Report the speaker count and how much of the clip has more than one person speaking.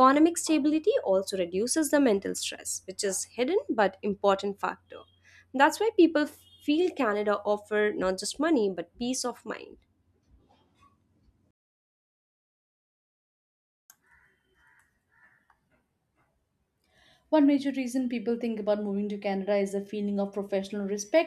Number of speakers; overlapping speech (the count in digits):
2, no overlap